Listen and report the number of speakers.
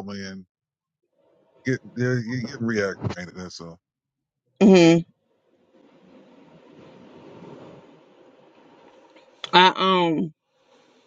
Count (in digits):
2